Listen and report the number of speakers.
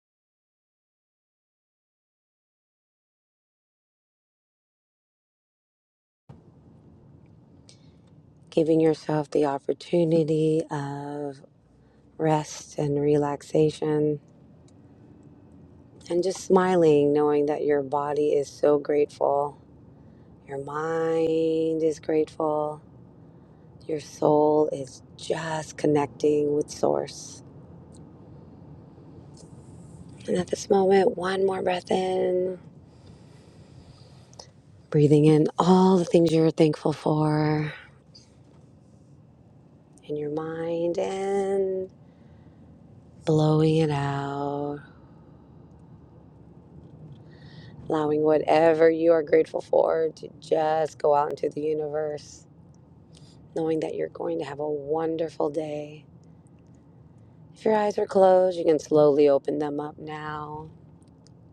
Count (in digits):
1